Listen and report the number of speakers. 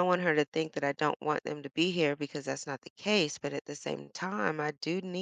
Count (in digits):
1